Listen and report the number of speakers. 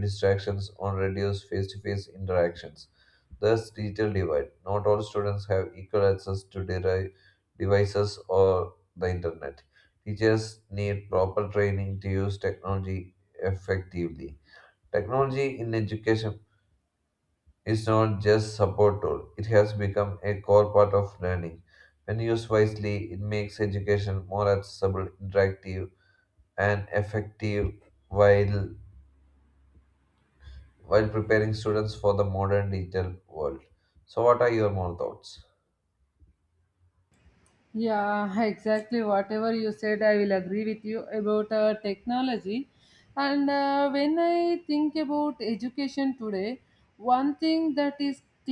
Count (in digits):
2